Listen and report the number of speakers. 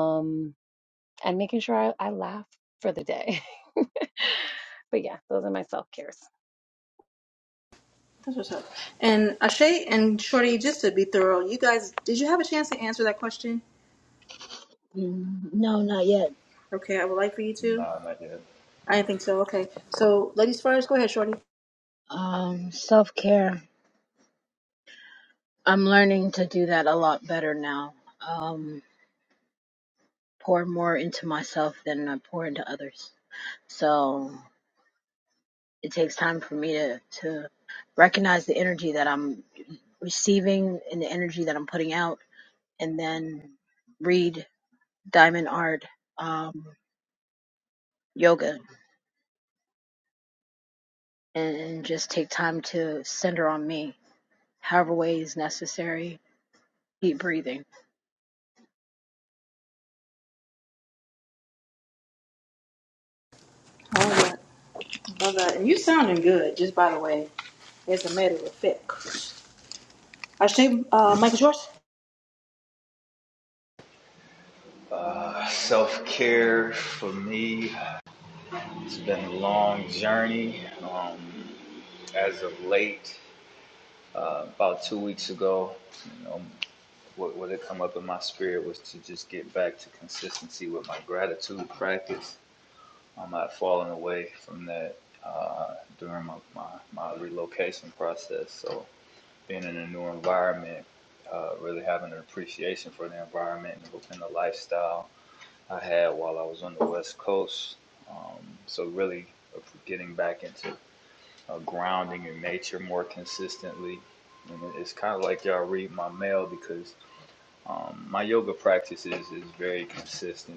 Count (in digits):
4